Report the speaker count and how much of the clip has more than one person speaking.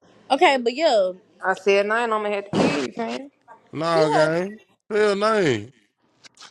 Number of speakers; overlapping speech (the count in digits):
3, about 6%